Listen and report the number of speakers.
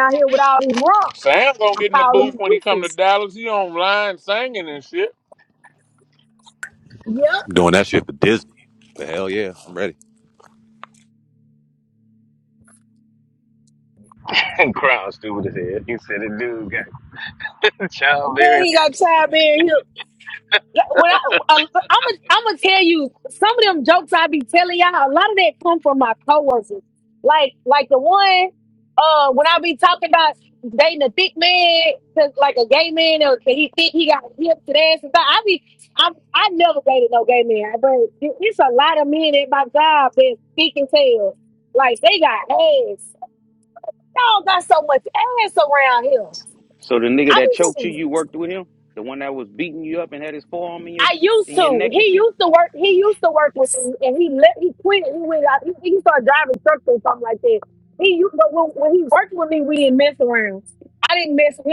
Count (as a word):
five